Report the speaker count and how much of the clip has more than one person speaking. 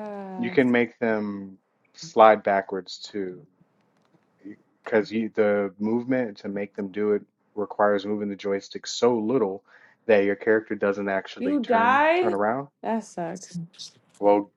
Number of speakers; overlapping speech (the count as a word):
two, about 7%